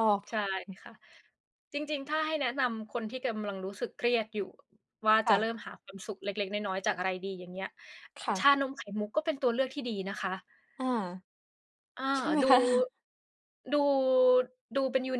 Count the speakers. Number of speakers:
two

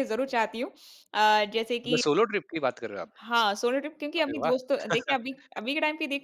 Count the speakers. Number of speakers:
two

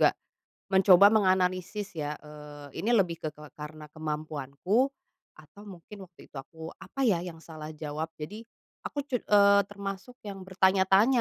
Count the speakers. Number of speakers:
one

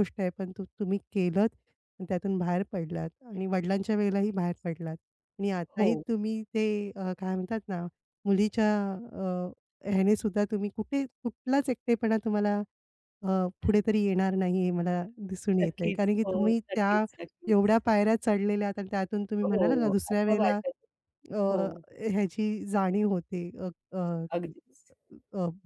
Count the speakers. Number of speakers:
two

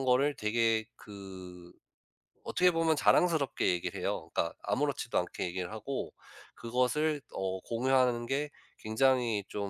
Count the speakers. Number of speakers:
one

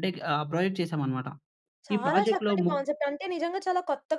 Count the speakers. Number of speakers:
two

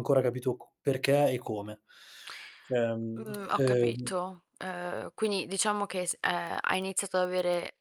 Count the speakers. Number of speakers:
two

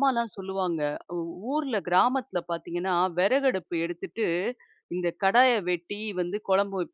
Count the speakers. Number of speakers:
one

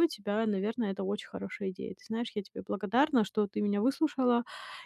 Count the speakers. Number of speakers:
one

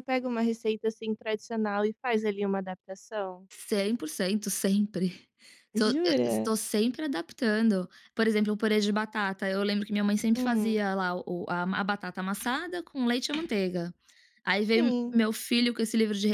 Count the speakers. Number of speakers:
two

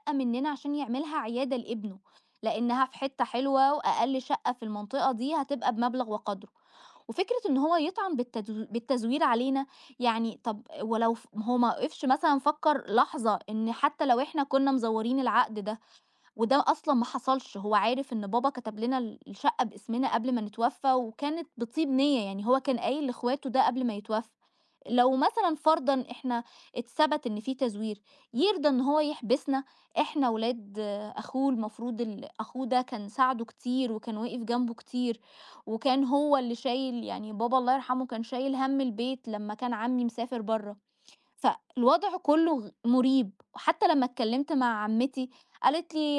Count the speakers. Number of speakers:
one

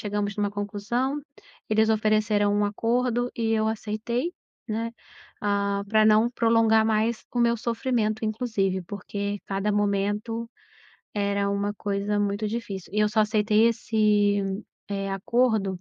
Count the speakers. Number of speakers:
one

